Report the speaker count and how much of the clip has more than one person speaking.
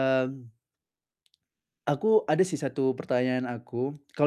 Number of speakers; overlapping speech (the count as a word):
one, no overlap